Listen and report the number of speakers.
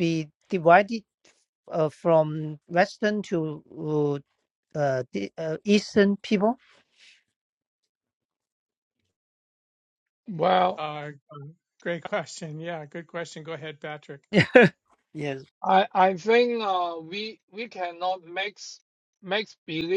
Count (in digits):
3